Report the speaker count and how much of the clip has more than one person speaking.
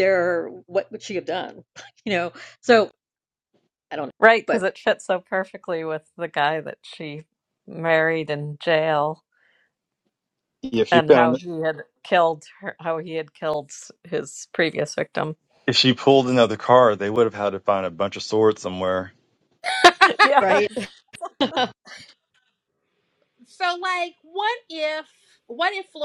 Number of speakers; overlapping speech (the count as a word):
four, about 3%